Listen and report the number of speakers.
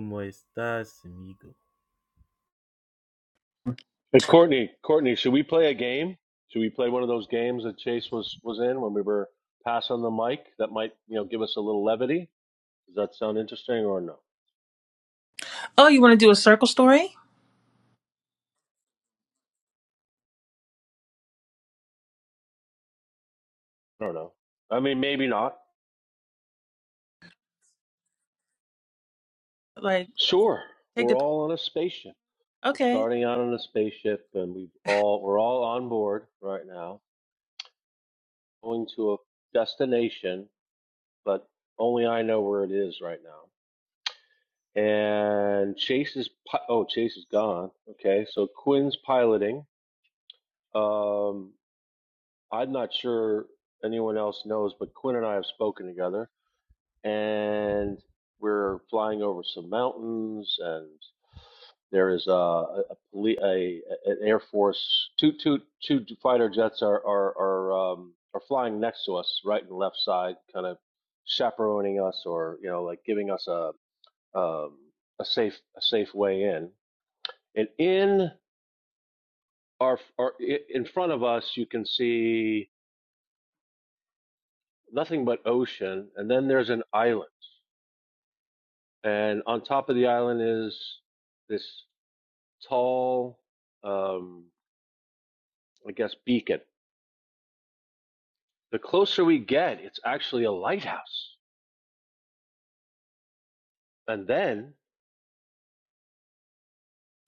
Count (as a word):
three